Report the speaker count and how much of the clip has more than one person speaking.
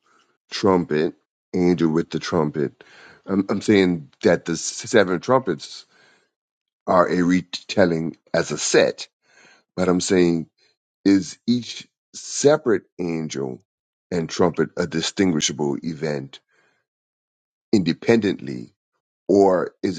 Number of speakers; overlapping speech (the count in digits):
1, no overlap